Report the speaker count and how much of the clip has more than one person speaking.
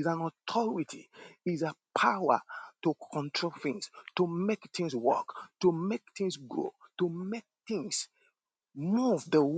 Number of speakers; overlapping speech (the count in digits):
1, no overlap